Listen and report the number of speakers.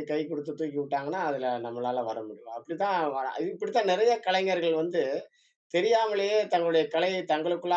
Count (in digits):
1